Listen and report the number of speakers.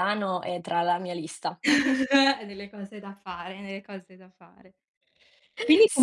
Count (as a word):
two